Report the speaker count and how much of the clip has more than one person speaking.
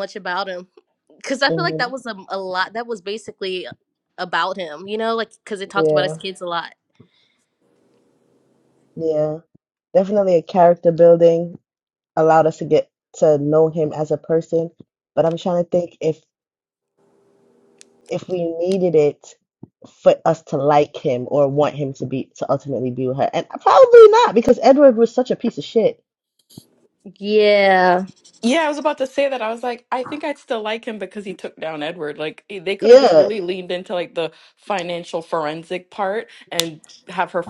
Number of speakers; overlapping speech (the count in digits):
3, about 3%